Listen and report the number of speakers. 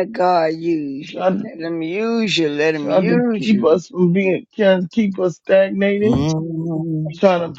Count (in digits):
3